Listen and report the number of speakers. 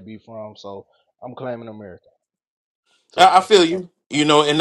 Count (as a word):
two